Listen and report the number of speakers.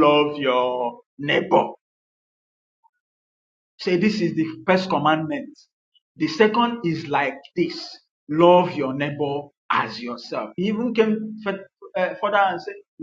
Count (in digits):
1